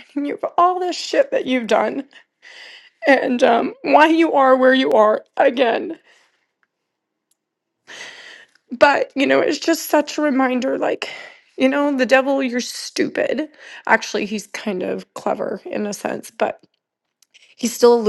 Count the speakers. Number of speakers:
one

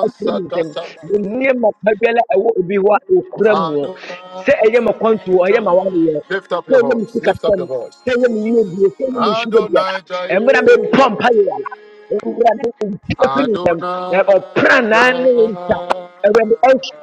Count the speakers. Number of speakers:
two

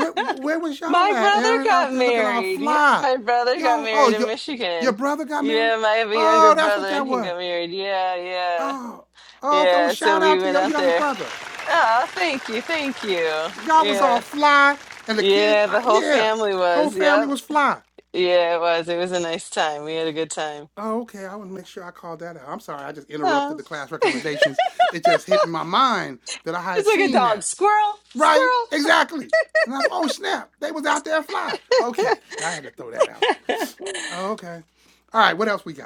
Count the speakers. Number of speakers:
two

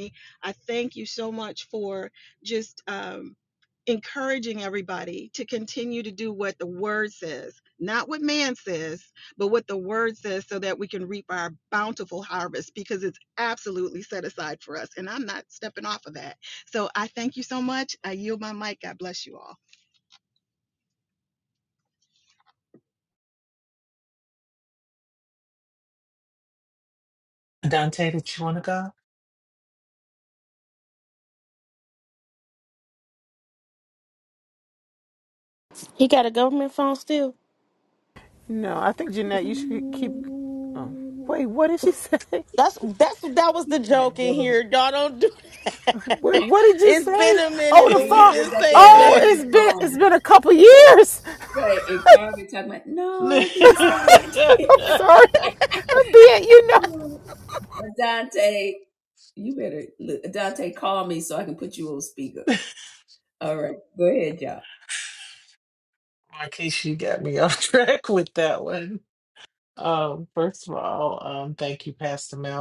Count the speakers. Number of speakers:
five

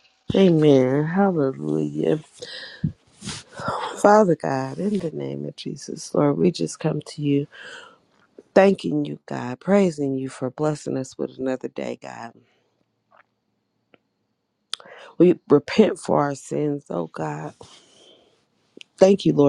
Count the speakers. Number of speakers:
one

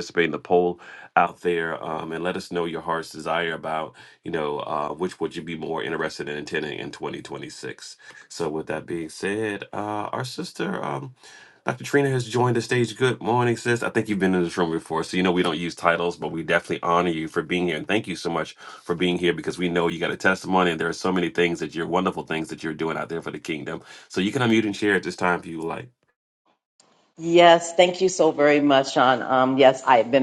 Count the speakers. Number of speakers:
two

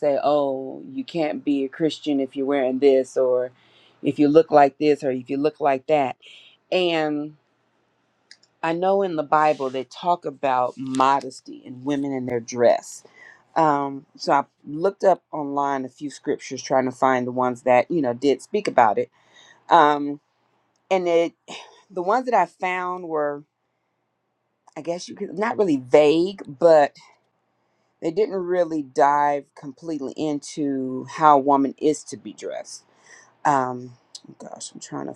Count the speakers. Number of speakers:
one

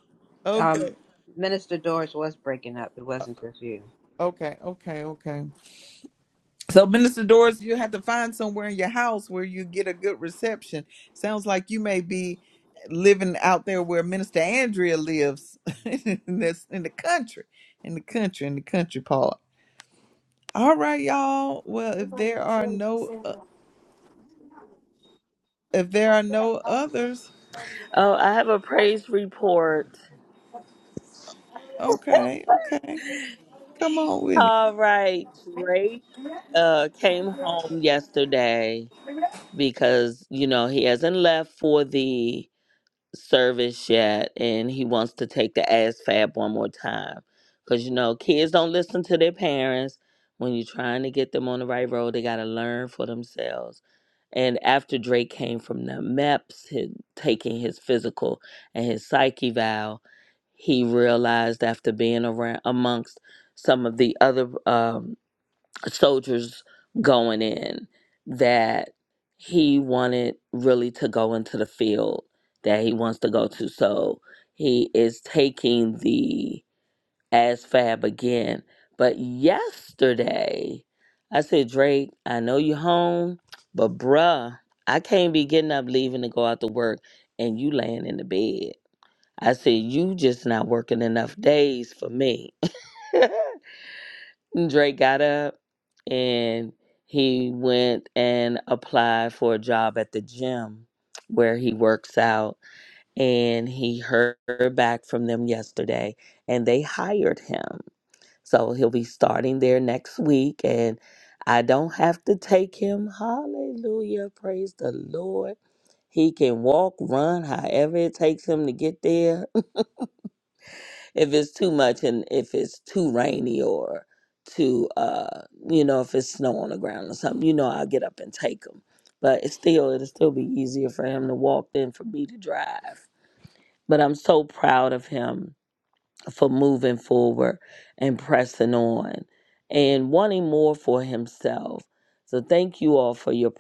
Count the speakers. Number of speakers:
three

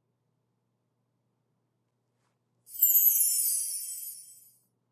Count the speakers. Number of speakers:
zero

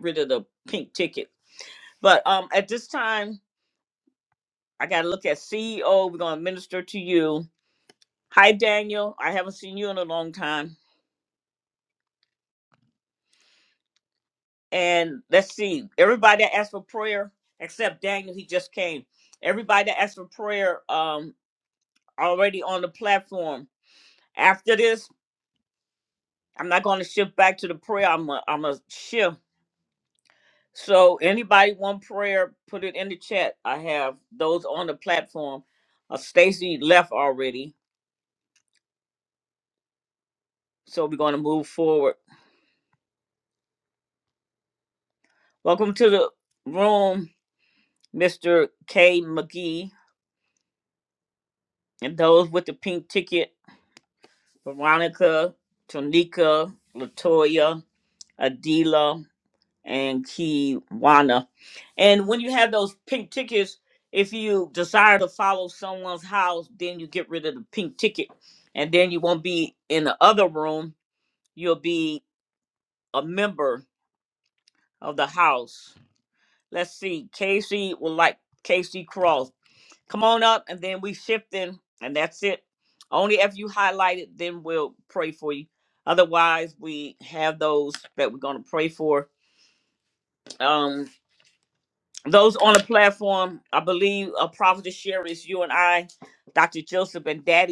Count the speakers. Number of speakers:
one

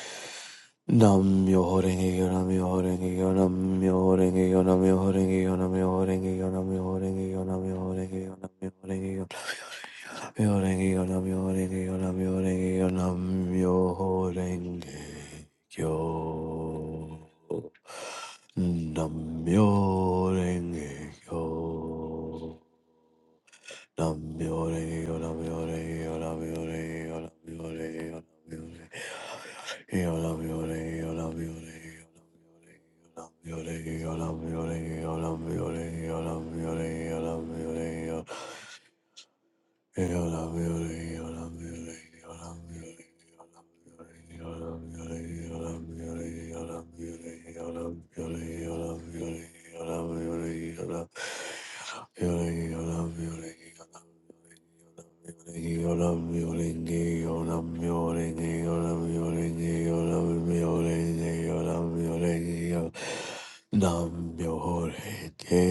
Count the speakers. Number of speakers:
one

